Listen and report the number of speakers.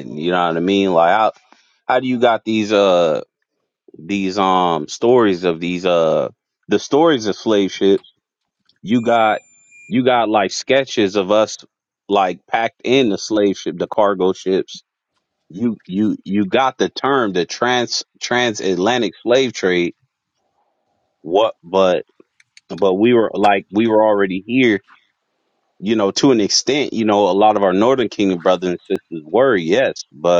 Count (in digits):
1